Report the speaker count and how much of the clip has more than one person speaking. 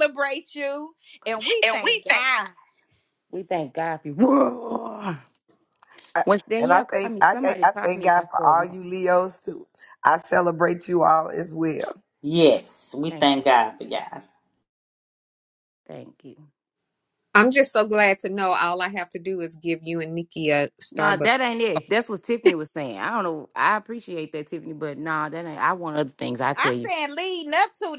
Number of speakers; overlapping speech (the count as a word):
five, about 13%